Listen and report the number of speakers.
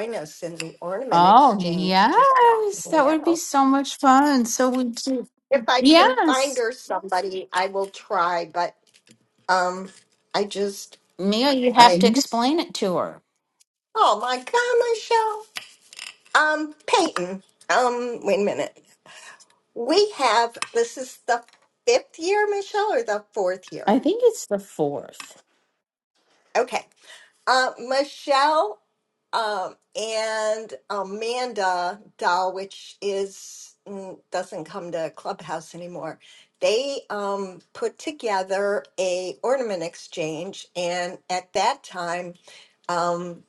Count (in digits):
2